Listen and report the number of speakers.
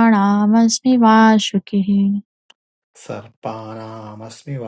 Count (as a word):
two